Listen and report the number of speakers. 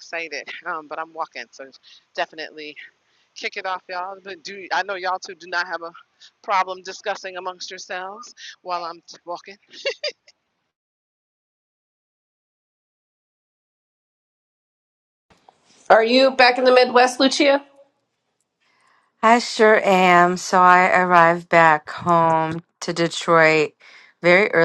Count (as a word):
three